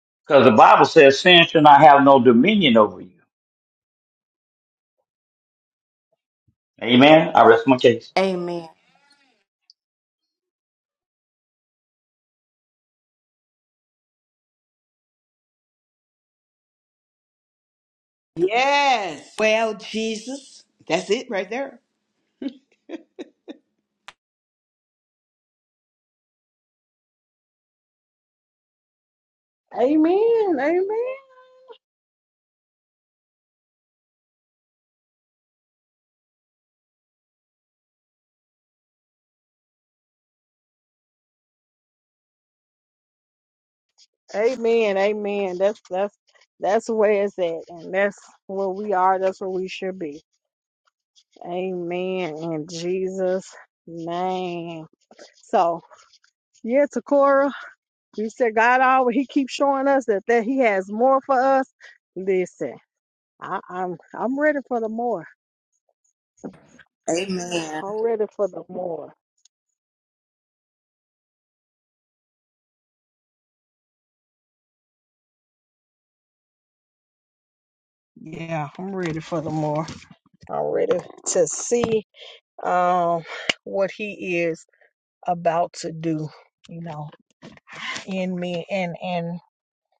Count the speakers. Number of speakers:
four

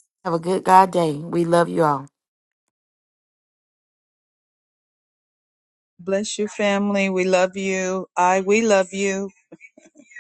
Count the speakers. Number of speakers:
two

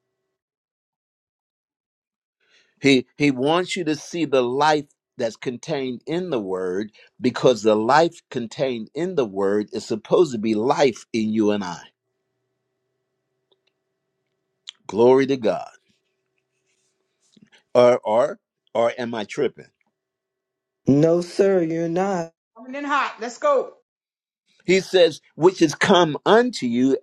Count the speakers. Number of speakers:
three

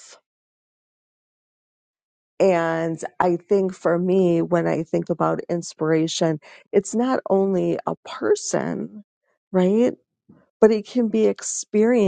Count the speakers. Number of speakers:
one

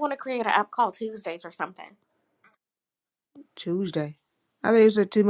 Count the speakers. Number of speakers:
two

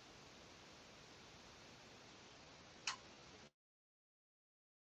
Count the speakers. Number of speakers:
zero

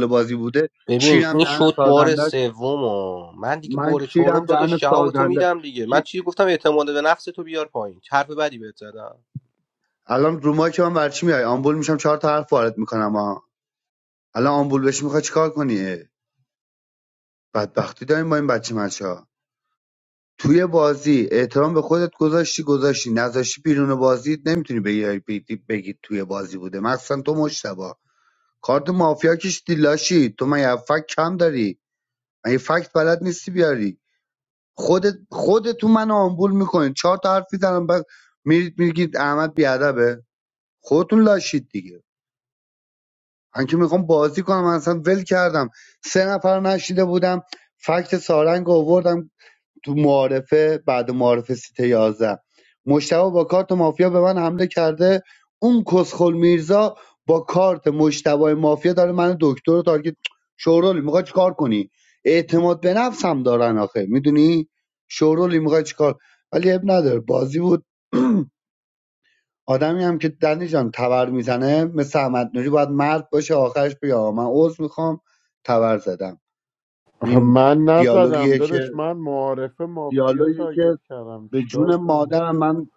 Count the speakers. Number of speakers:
three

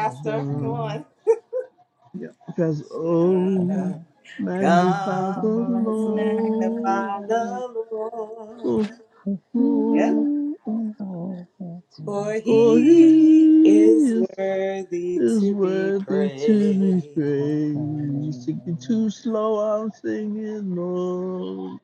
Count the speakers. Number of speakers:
three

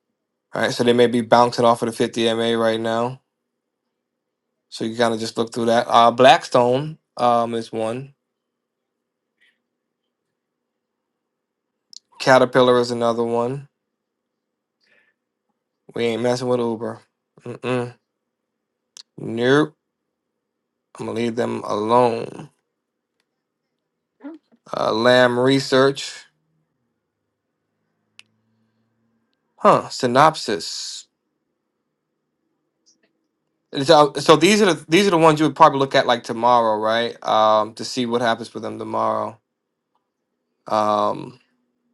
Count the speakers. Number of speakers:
one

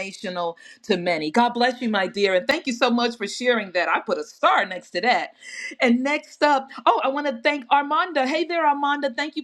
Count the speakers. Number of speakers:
one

